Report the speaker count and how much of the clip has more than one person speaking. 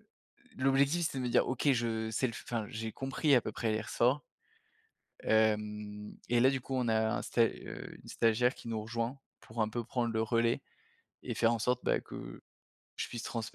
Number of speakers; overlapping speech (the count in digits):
1, no overlap